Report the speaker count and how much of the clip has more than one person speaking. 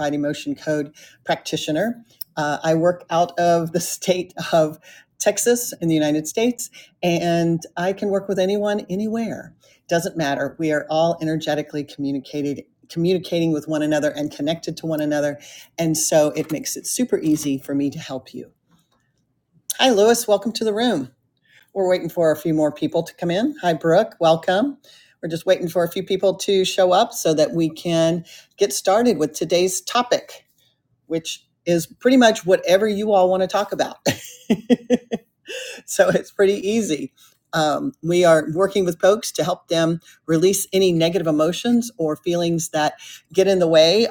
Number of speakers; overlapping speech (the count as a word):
one, no overlap